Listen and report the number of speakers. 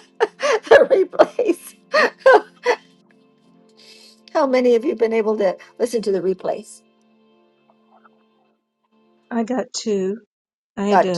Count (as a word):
two